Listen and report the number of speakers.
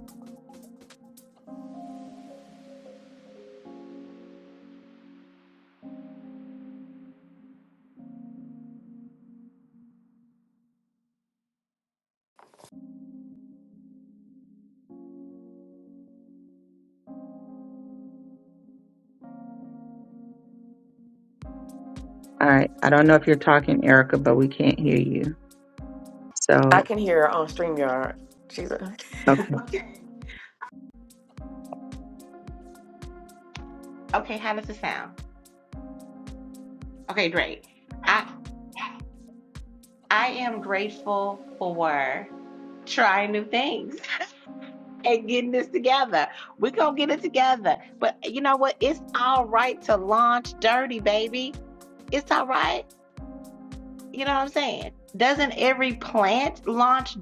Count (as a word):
three